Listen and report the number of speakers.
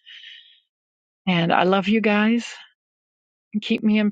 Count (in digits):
1